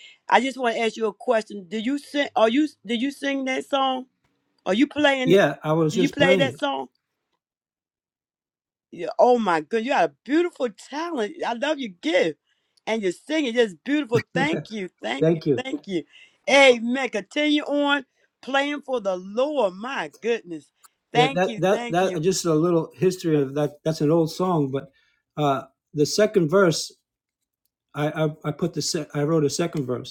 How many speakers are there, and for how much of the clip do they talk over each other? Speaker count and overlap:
two, about 7%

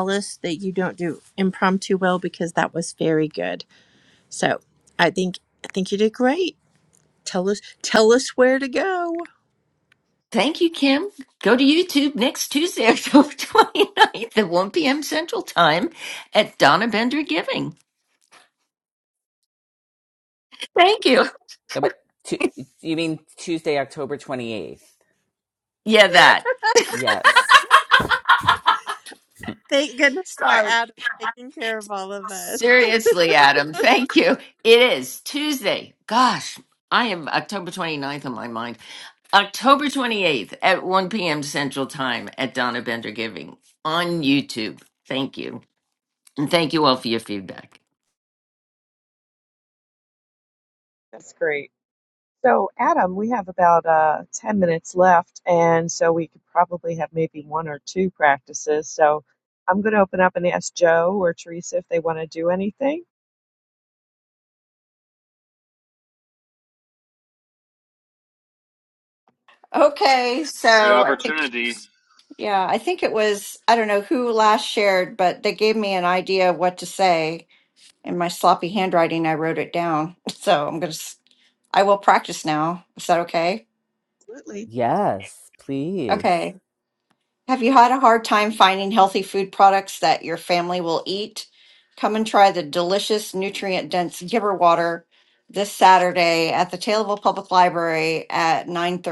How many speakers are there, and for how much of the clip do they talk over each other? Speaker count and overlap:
six, about 1%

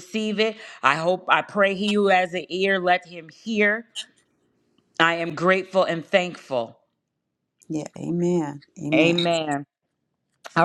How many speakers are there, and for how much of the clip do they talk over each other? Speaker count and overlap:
two, about 3%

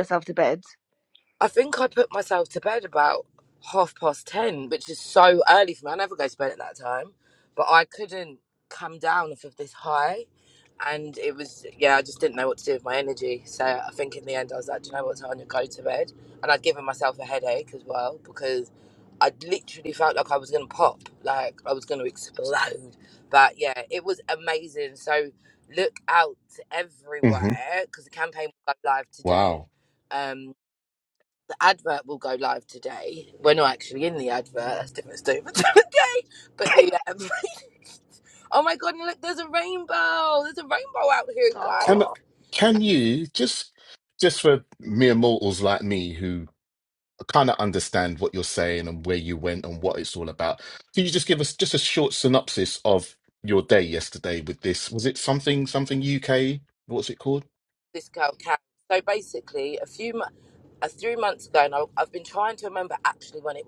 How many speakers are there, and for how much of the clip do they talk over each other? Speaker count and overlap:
three, about 1%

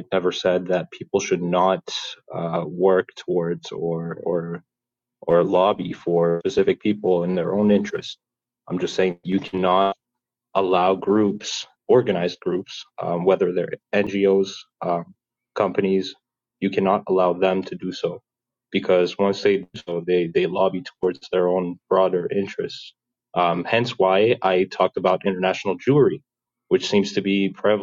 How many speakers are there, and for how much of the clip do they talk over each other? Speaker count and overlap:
one, no overlap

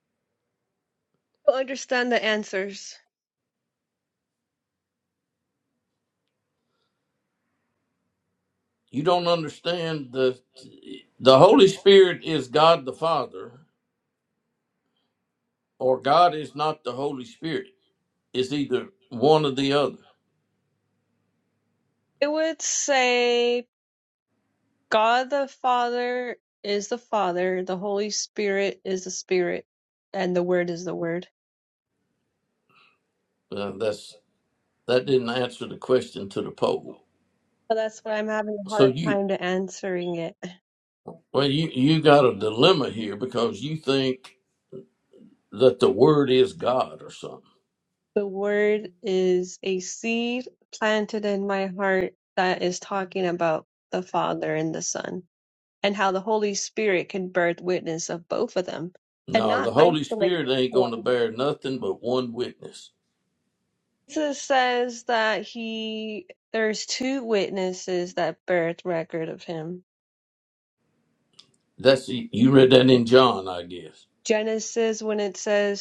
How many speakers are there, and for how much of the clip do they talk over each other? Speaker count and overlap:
two, about 2%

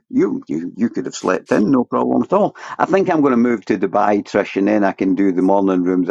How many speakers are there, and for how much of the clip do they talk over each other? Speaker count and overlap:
one, no overlap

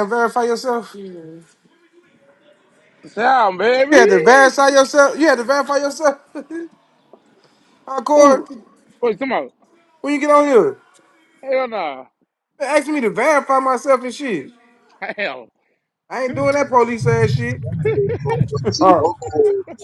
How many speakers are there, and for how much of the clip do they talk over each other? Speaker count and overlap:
three, about 6%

